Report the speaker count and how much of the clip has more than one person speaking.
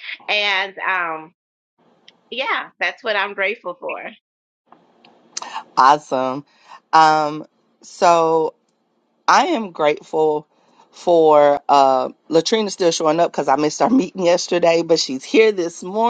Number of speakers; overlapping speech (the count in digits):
2, no overlap